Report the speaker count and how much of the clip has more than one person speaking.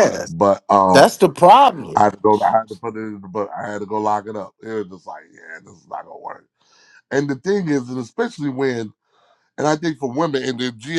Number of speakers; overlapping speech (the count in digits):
2, about 2%